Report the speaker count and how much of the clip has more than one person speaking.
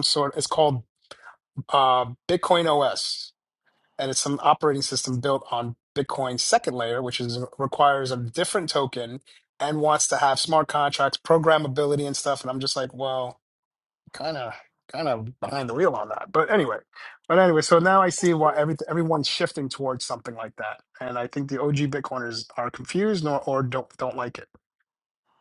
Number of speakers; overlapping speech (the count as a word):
one, no overlap